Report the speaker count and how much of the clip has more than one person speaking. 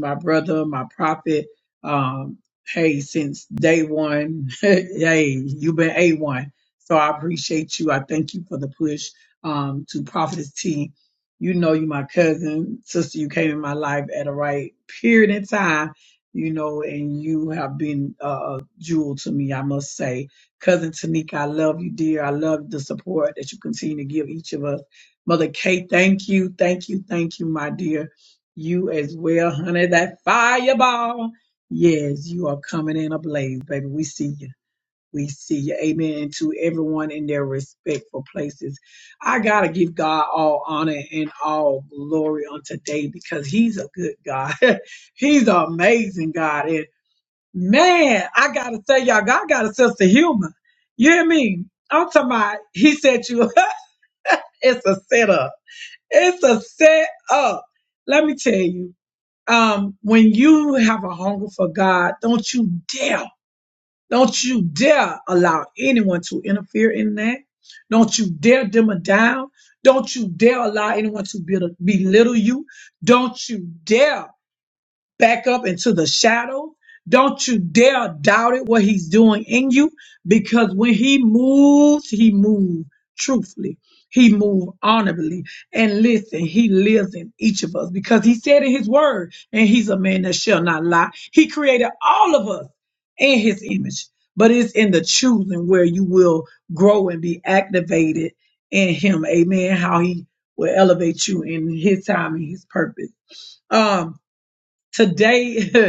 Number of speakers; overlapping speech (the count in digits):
1, no overlap